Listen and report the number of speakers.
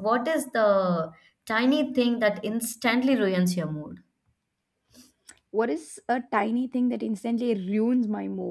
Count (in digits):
2